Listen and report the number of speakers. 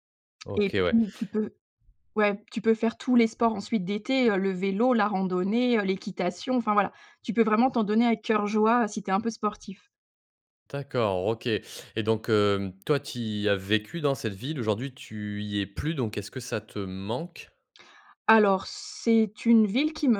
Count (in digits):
2